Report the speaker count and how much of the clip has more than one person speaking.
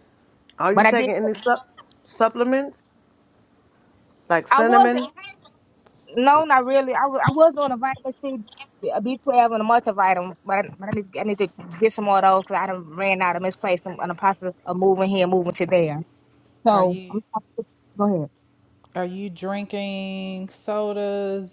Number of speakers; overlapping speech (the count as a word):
three, about 6%